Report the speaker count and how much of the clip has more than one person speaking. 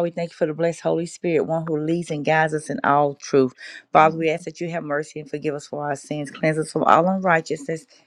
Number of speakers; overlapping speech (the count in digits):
1, no overlap